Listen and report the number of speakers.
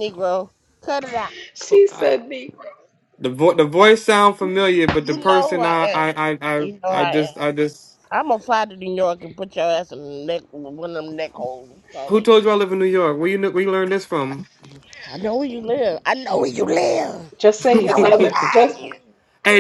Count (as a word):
three